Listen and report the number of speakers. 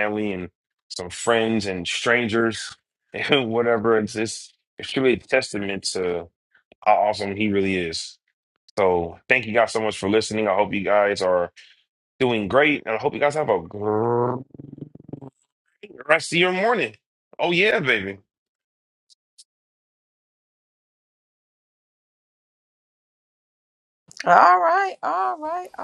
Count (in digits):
2